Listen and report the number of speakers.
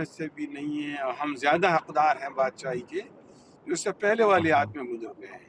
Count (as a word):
one